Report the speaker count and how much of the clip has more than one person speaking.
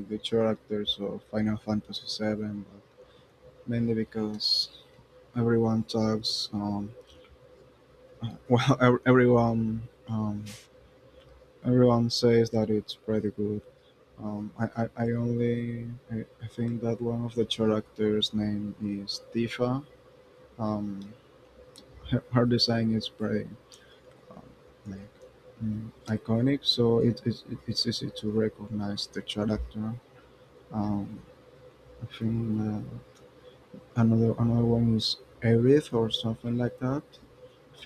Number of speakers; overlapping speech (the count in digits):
1, no overlap